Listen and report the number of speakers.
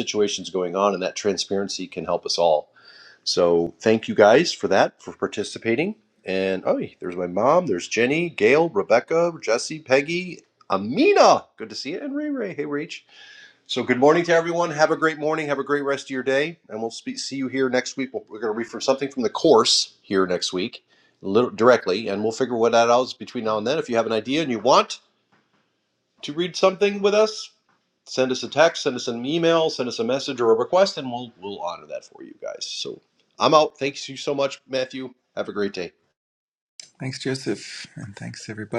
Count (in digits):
2